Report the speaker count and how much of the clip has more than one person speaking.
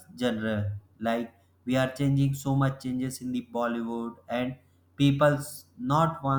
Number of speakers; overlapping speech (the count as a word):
one, no overlap